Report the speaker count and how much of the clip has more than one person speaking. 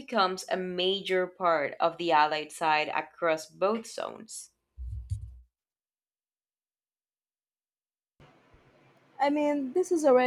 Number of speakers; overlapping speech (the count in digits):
2, no overlap